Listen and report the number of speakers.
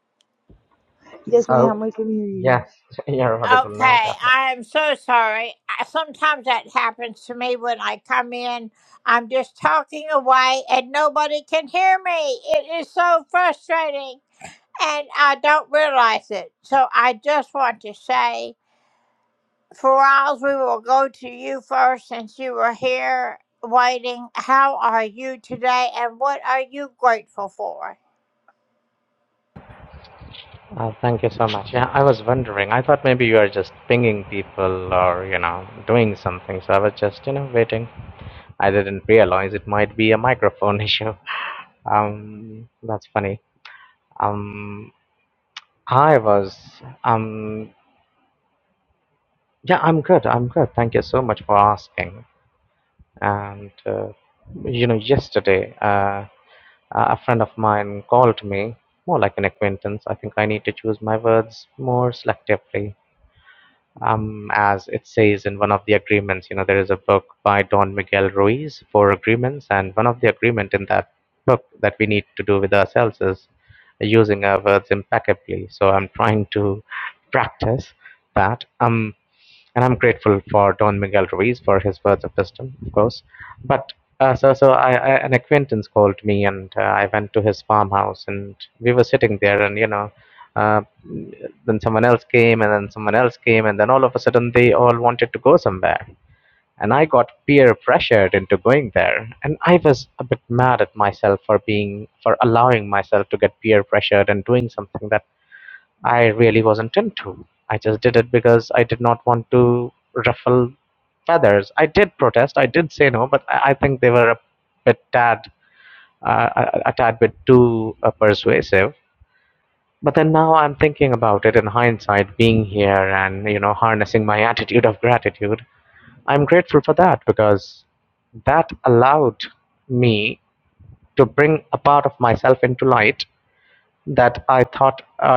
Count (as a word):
three